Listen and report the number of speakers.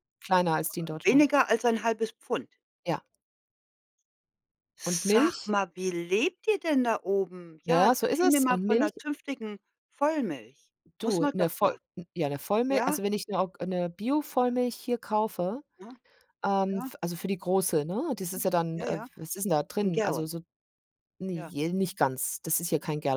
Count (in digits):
2